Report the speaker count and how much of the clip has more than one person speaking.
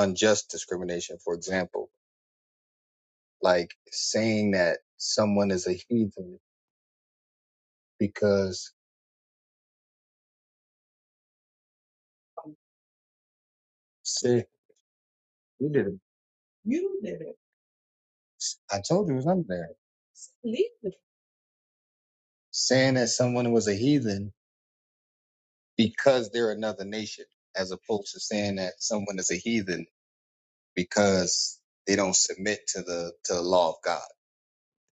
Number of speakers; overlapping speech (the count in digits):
1, no overlap